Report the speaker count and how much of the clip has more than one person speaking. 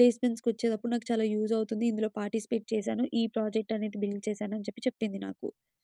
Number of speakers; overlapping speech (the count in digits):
1, no overlap